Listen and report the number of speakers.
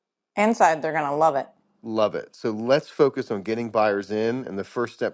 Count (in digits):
2